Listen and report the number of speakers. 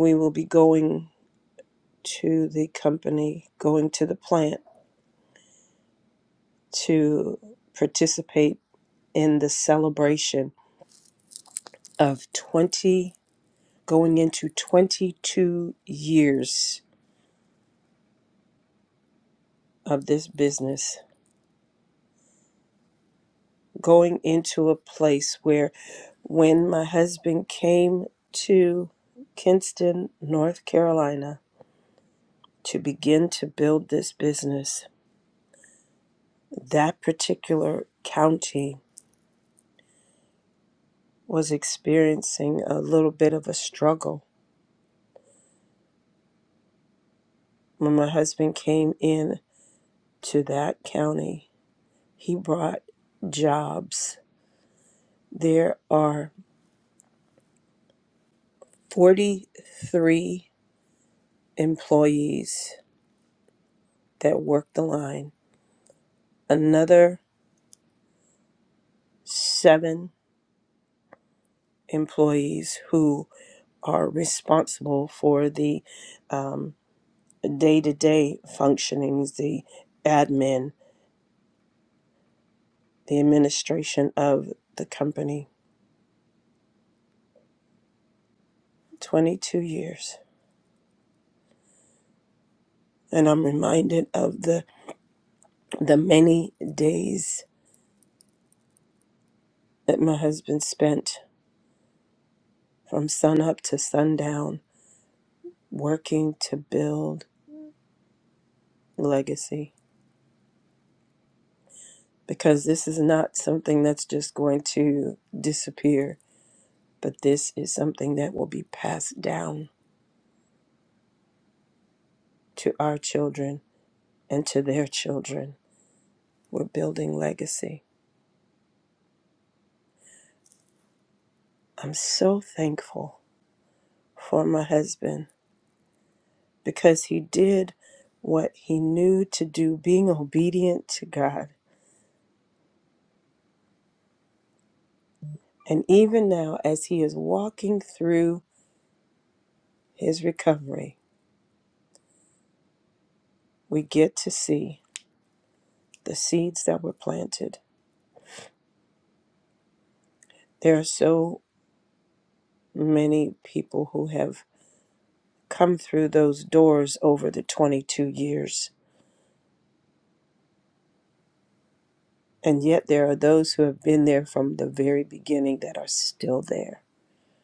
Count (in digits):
1